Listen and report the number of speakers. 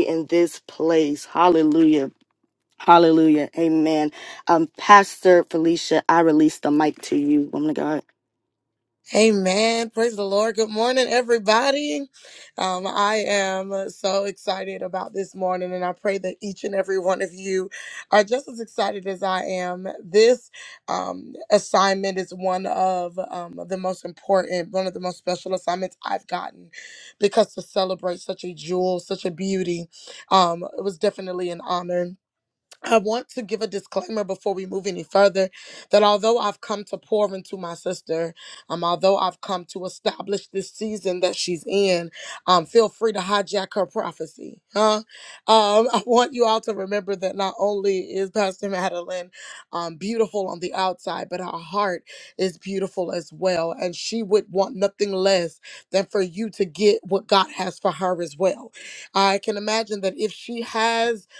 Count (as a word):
two